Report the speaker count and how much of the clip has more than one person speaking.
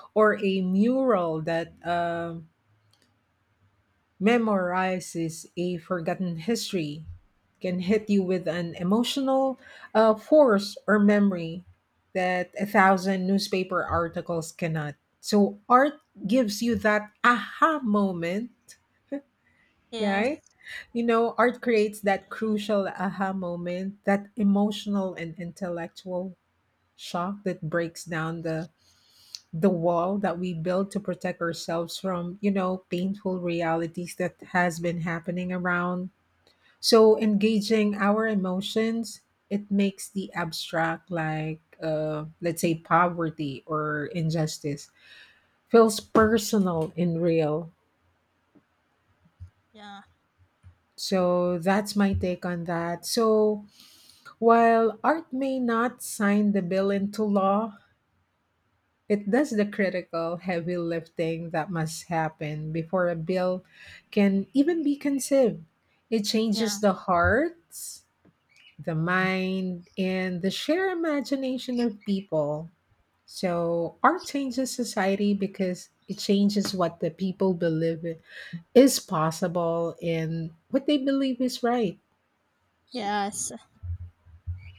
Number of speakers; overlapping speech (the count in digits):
2, about 1%